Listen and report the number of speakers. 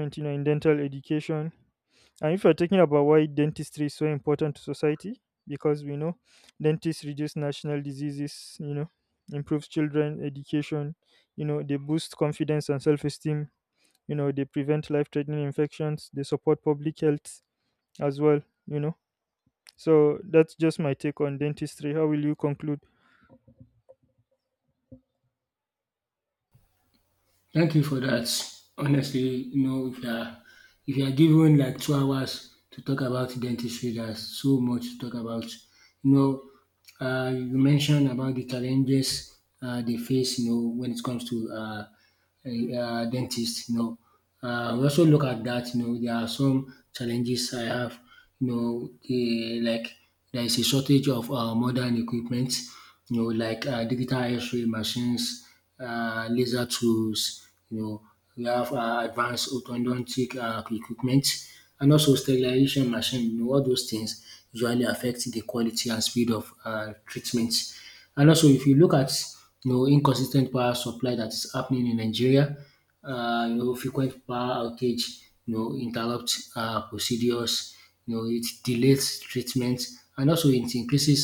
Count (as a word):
two